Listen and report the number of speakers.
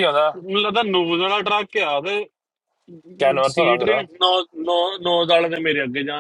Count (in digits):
3